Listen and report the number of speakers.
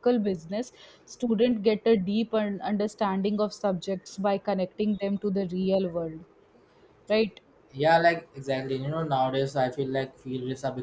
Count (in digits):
2